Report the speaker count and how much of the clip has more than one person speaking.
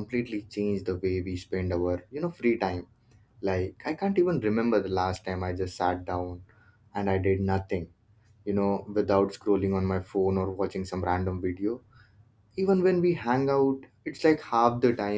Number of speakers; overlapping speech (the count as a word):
one, no overlap